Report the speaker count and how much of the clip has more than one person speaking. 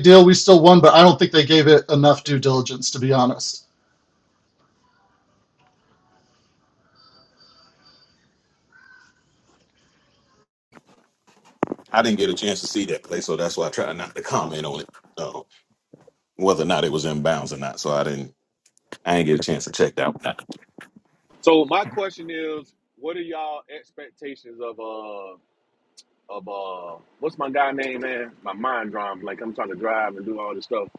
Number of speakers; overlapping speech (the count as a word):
three, no overlap